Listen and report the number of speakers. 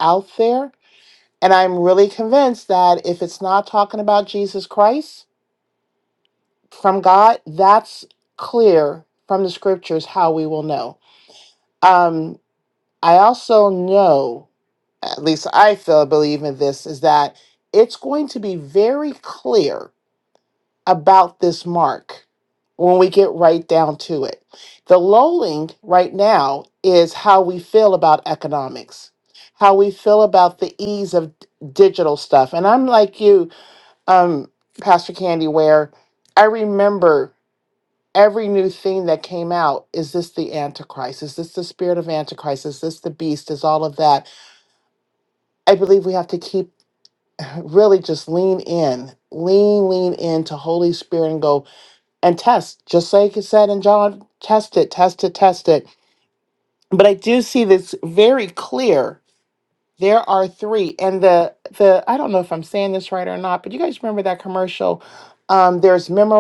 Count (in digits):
1